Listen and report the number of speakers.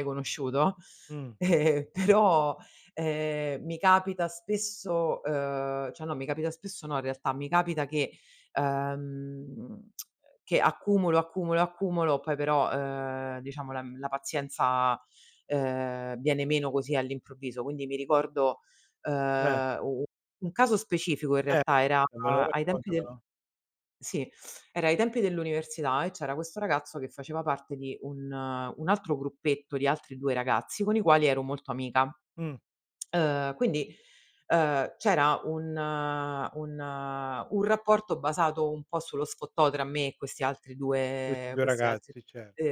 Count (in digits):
2